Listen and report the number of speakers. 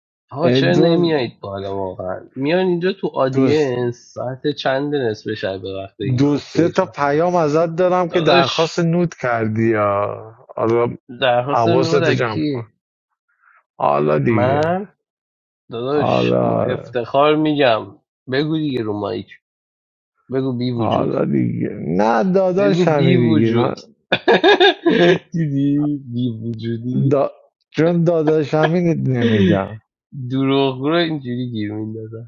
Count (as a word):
two